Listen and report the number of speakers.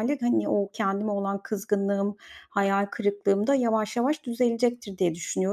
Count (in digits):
1